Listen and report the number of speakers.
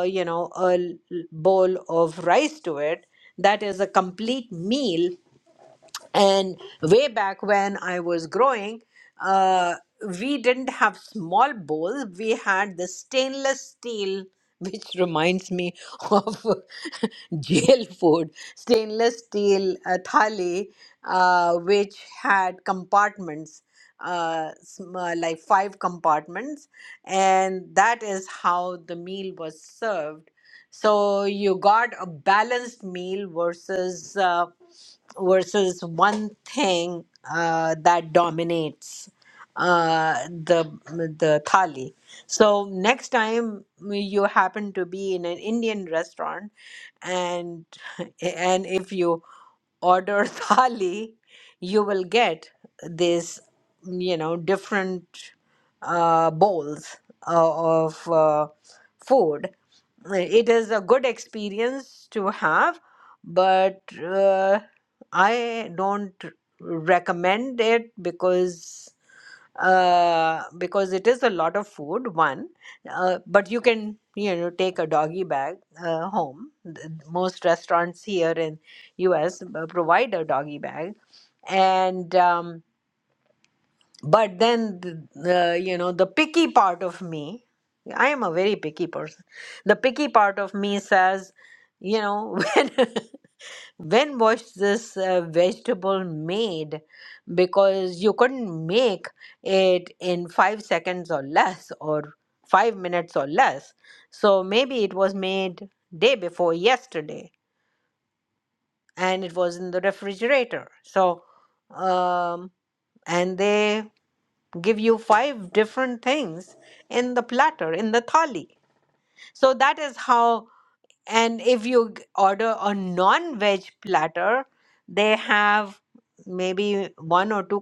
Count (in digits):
1